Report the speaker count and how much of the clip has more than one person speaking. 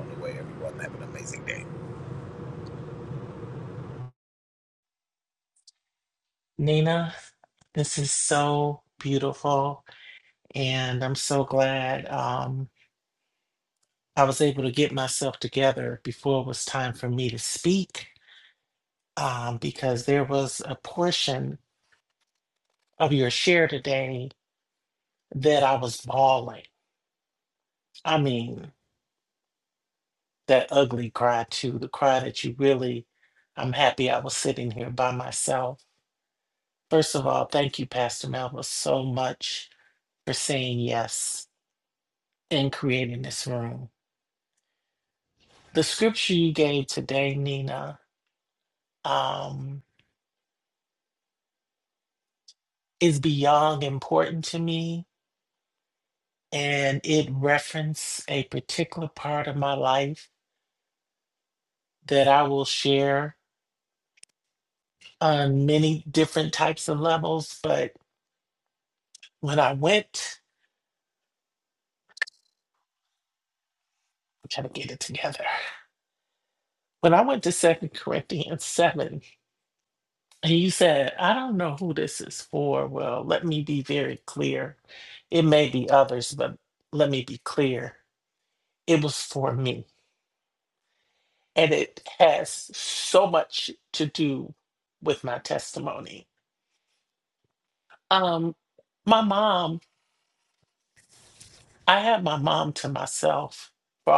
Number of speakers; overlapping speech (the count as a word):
two, no overlap